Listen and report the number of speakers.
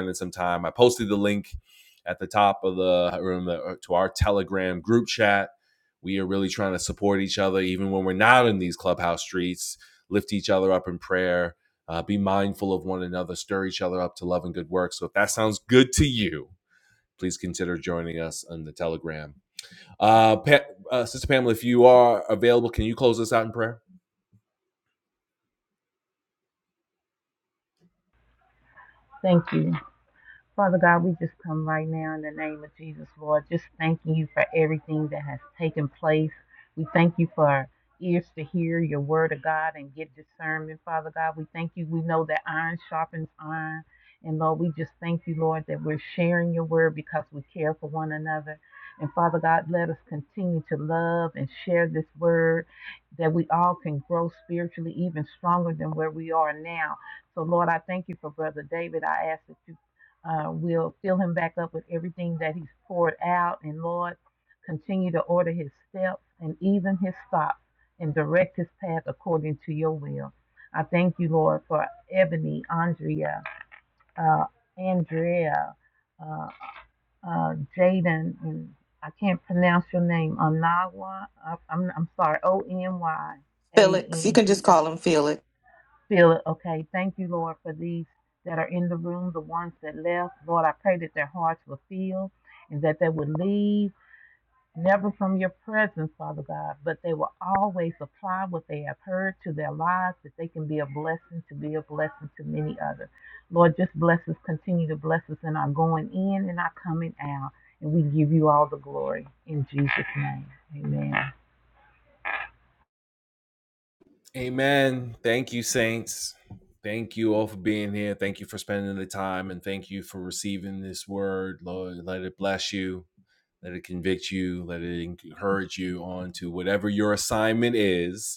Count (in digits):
3